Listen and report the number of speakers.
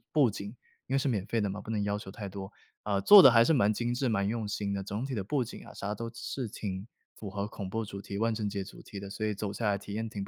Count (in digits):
1